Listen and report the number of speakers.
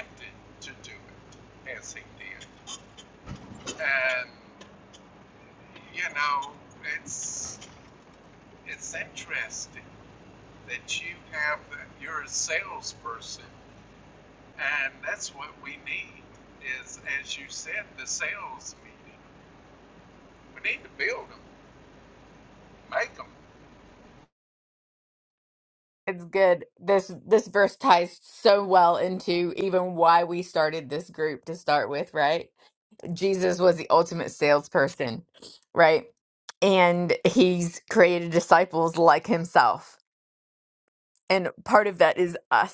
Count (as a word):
two